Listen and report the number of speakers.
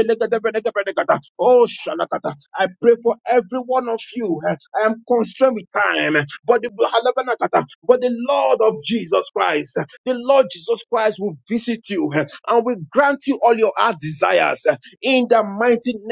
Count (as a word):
one